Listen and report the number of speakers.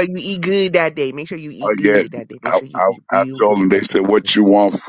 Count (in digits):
2